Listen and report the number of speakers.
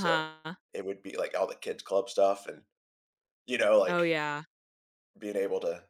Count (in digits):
2